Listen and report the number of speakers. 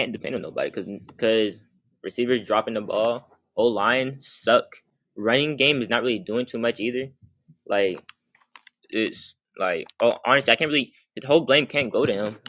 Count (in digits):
1